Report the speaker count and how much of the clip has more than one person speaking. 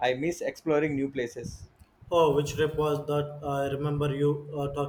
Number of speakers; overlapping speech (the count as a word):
two, no overlap